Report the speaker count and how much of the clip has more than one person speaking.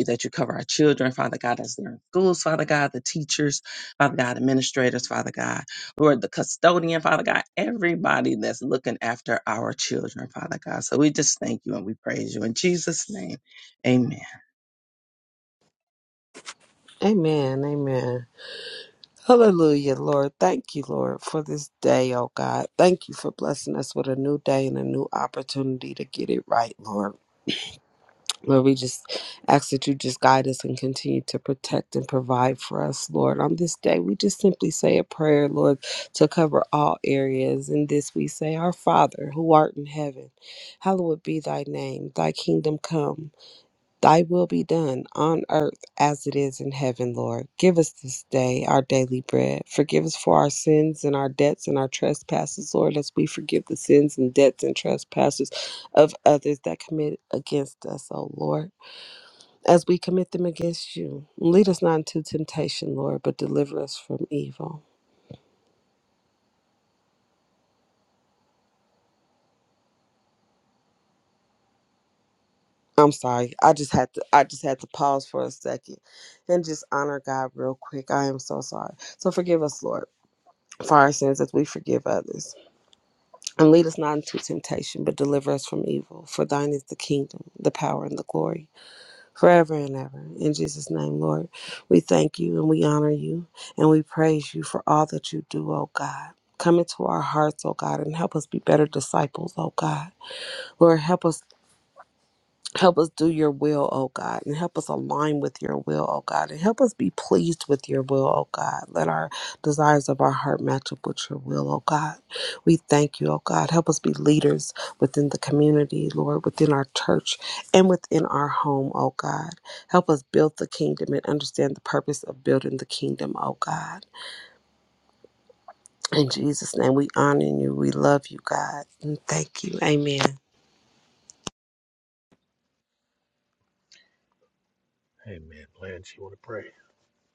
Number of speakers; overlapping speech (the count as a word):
three, no overlap